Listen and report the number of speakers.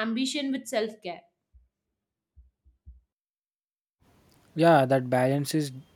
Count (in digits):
2